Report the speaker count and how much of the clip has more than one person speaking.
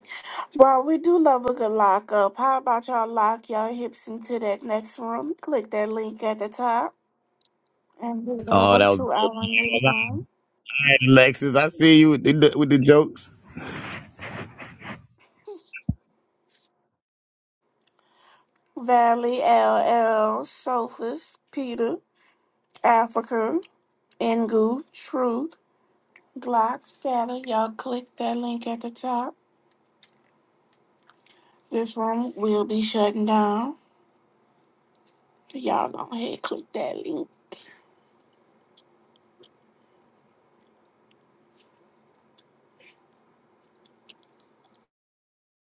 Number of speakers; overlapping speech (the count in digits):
2, about 3%